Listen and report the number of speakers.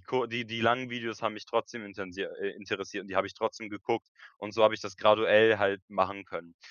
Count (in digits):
1